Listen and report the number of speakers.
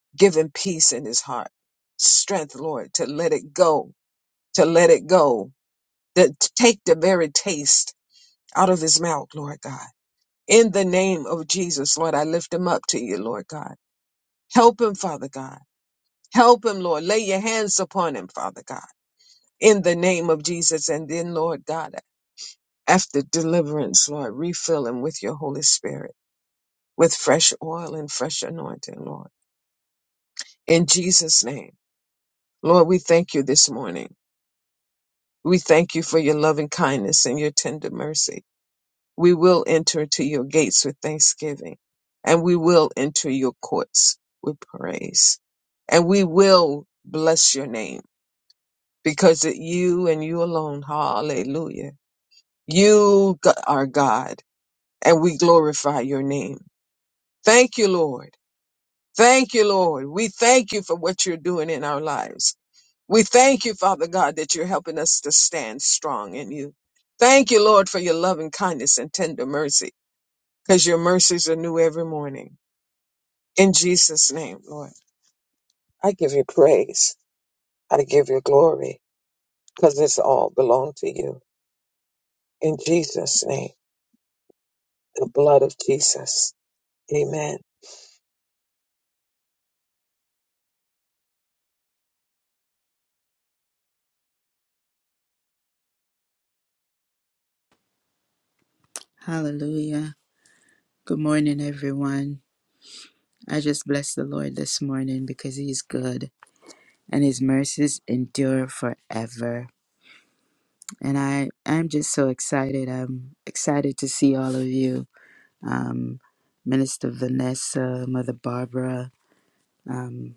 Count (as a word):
two